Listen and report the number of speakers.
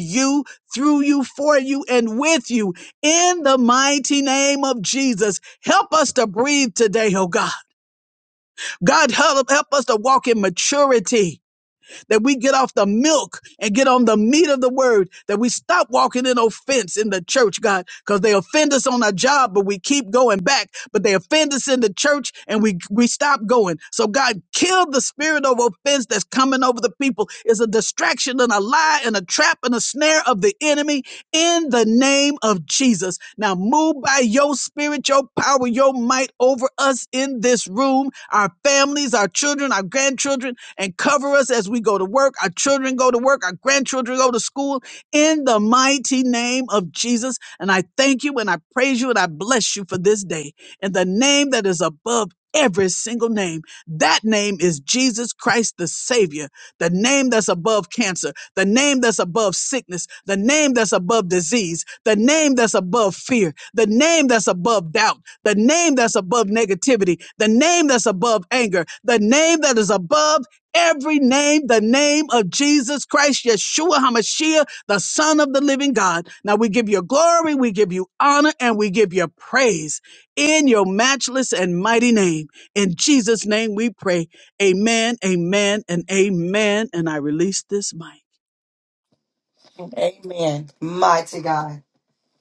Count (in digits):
2